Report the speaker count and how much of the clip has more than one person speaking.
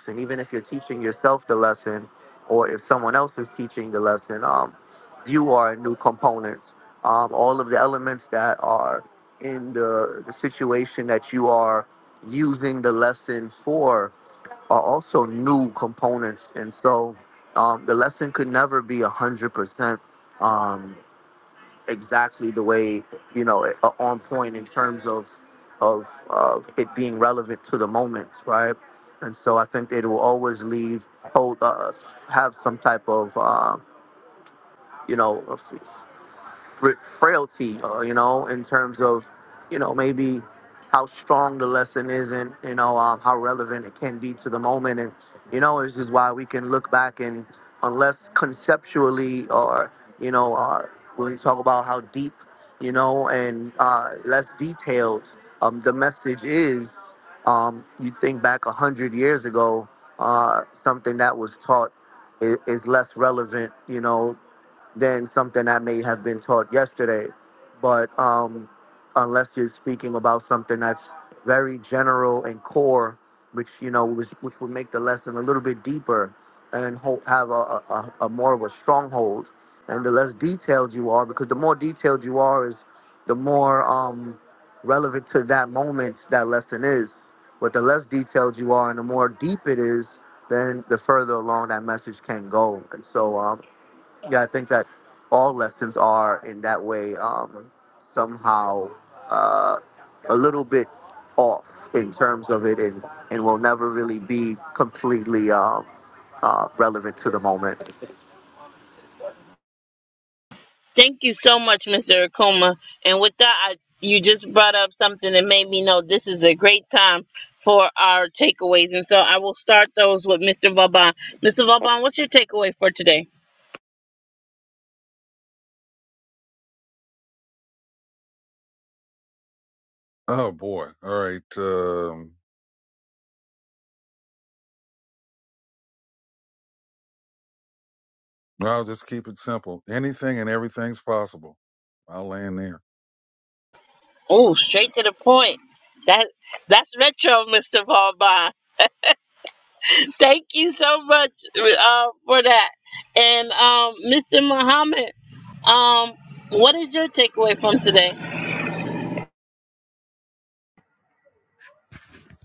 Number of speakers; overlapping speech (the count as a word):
three, no overlap